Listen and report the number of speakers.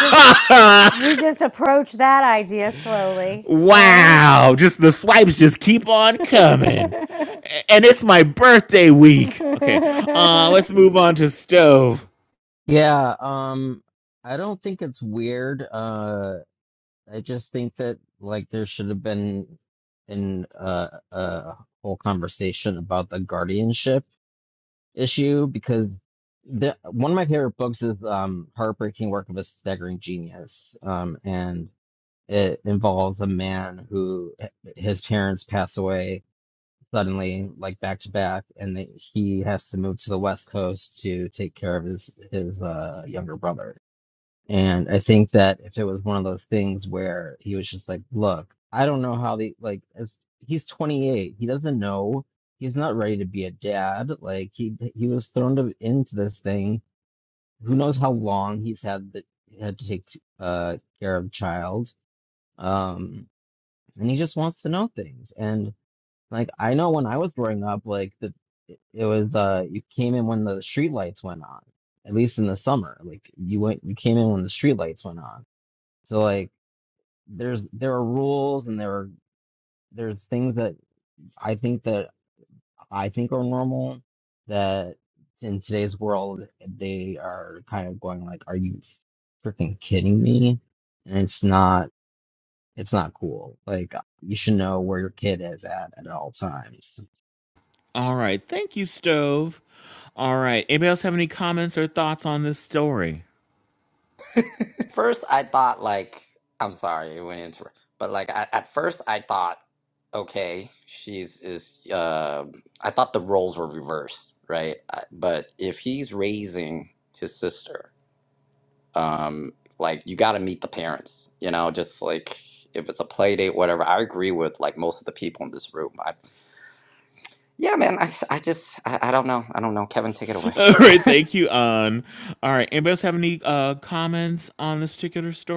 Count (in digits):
4